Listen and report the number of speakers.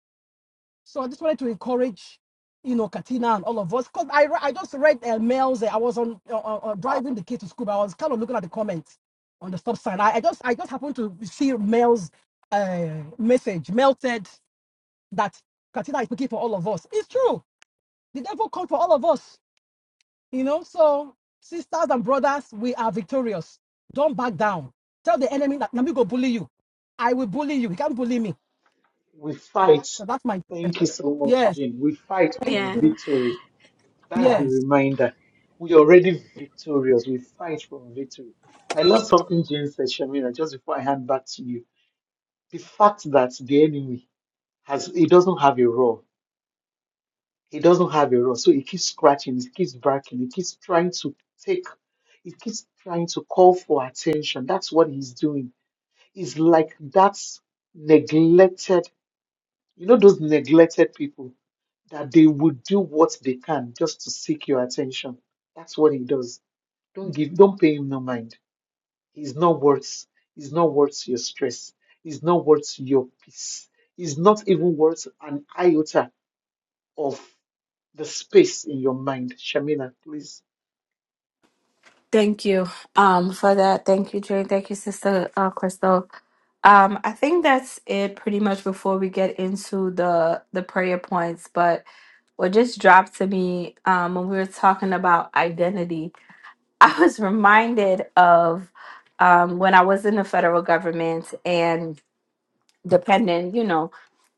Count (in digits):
3